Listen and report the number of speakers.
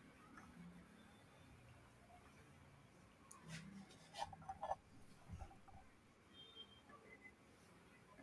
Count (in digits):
0